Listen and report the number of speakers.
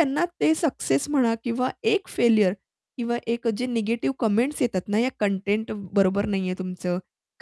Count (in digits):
1